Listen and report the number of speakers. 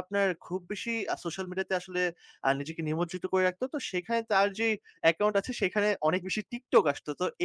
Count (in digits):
1